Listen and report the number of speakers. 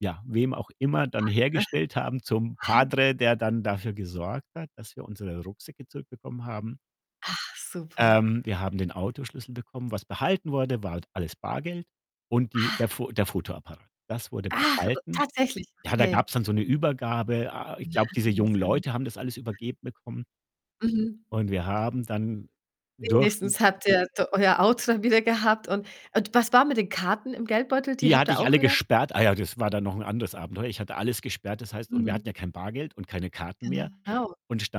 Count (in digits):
2